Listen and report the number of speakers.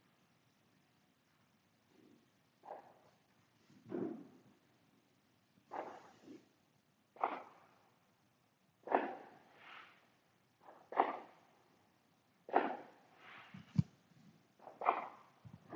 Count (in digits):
0